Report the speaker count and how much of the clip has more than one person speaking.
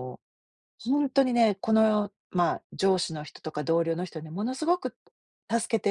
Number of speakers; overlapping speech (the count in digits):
1, no overlap